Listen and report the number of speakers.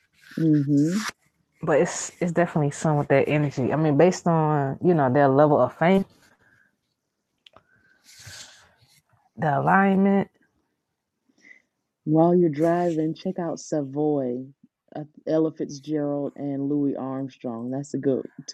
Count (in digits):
2